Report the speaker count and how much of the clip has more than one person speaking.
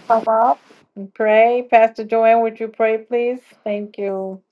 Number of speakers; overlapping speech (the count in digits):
1, no overlap